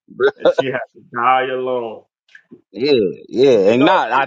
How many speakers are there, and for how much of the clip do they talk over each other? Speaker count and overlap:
two, about 15%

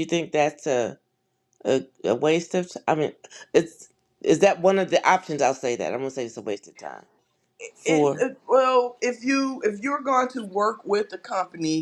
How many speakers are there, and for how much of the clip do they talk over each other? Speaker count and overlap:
two, about 3%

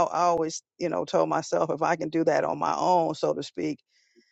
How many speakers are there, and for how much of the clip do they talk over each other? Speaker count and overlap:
one, no overlap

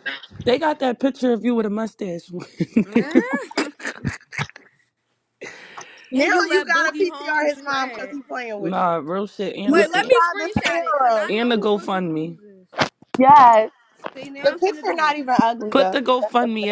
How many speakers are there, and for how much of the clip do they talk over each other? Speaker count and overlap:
three, about 39%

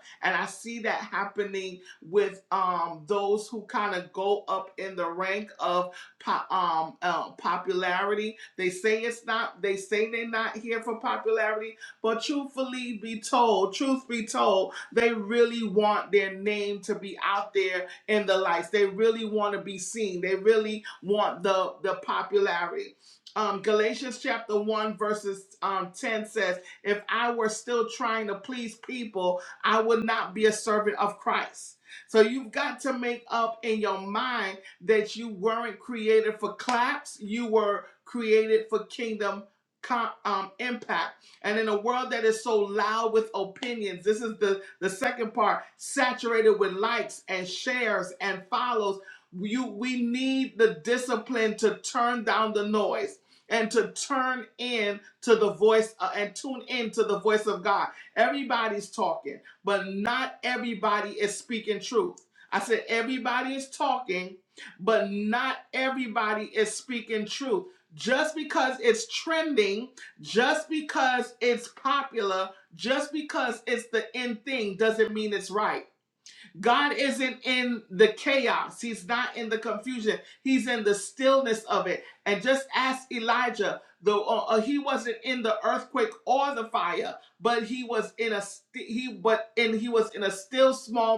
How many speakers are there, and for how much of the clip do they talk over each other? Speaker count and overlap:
one, no overlap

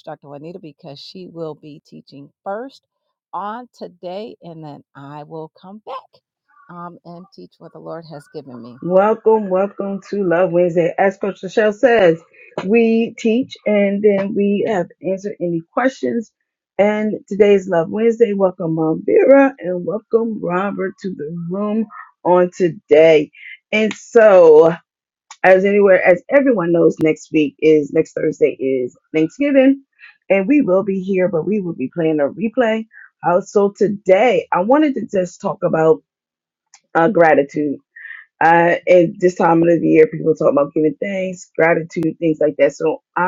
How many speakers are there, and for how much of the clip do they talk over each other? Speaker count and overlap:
two, no overlap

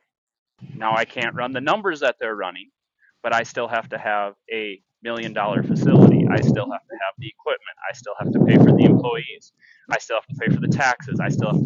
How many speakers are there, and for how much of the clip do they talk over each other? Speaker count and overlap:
one, no overlap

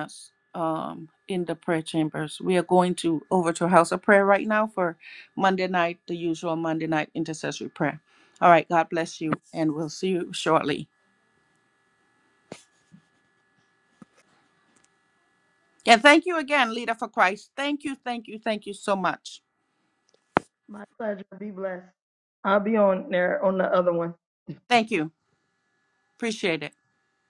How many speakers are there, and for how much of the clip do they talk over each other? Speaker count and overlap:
two, no overlap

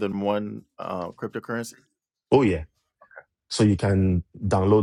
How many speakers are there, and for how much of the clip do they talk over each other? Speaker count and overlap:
two, no overlap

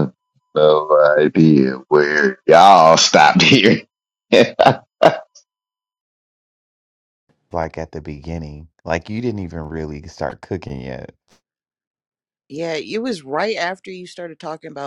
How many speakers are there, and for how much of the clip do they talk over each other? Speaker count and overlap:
three, no overlap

